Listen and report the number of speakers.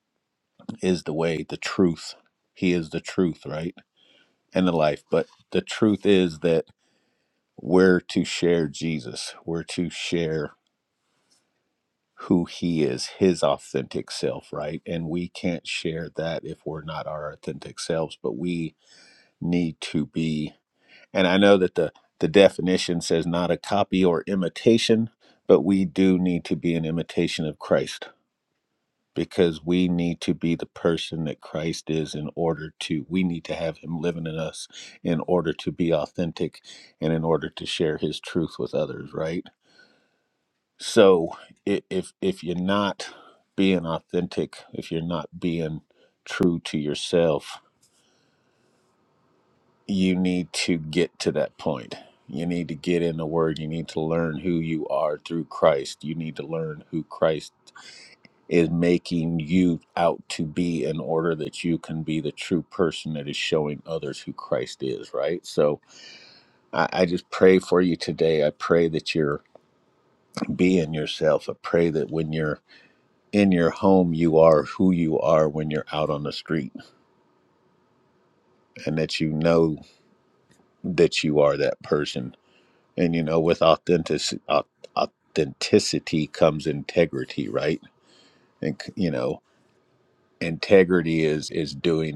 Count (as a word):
one